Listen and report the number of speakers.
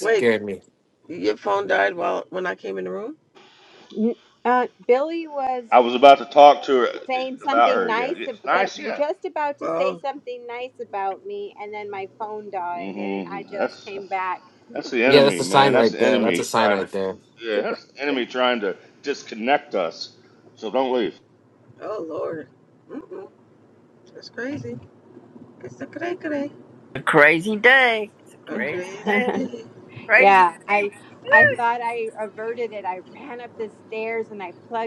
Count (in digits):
5